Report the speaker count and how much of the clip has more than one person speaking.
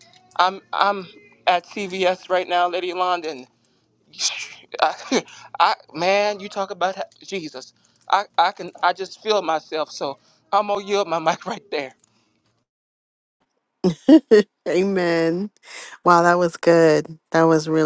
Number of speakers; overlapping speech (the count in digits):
2, no overlap